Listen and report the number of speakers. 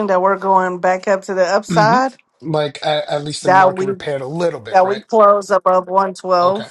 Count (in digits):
2